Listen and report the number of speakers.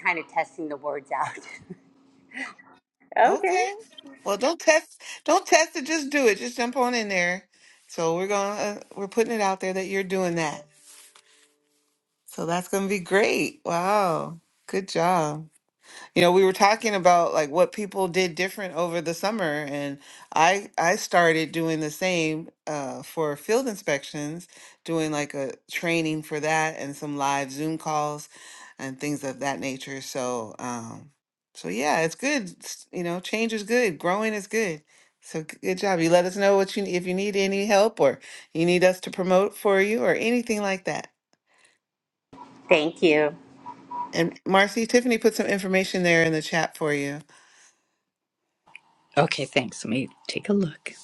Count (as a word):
three